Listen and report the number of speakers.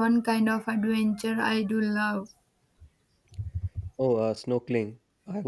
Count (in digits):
2